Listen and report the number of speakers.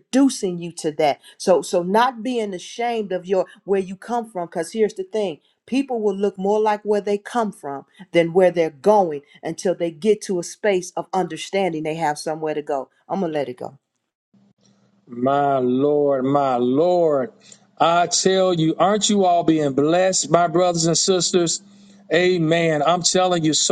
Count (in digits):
2